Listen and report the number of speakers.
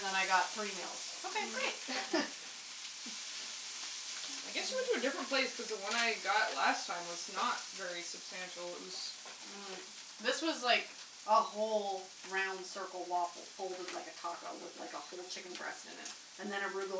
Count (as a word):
two